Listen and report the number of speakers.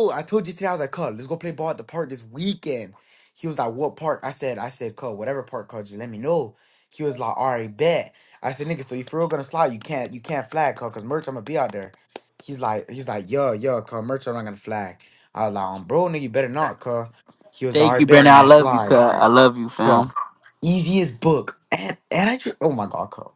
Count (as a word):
two